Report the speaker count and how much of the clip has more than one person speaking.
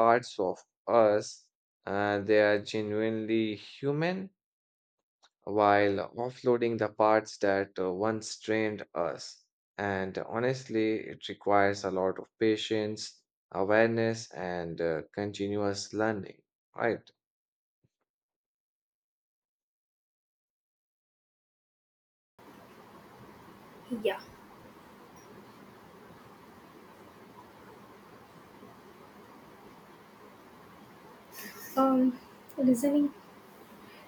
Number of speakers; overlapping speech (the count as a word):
two, no overlap